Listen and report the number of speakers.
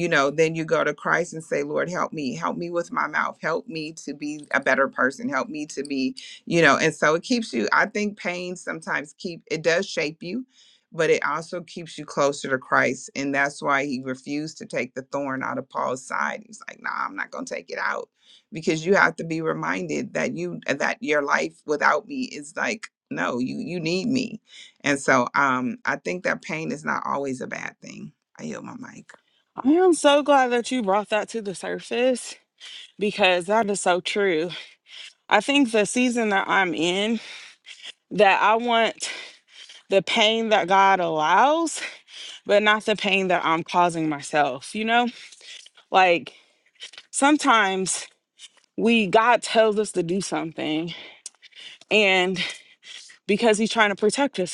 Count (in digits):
2